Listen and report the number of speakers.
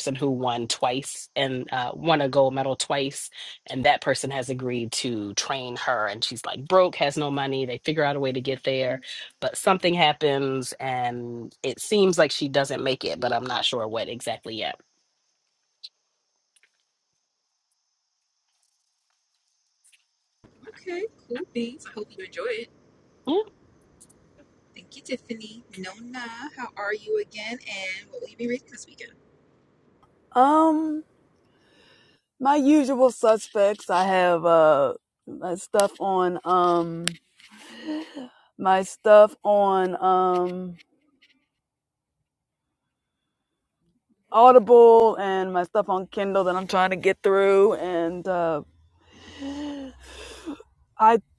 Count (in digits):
3